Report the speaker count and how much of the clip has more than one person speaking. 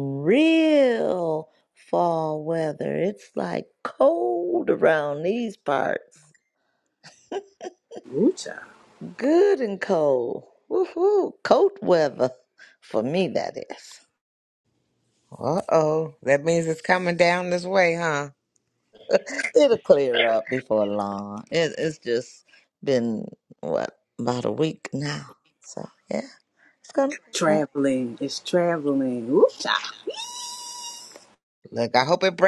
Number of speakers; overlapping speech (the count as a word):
three, about 1%